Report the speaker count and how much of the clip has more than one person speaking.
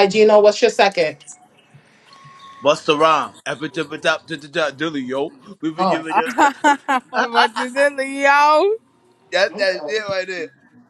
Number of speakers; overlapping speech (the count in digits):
3, about 7%